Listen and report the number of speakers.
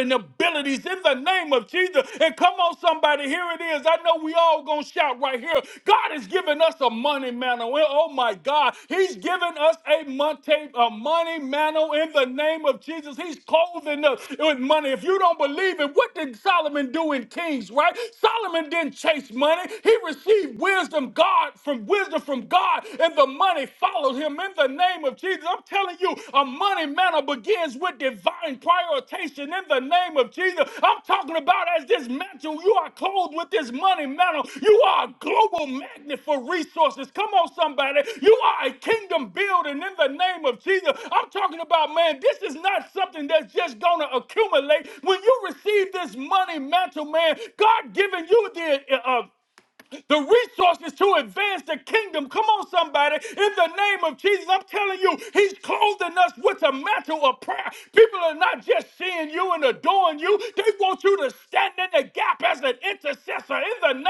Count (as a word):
one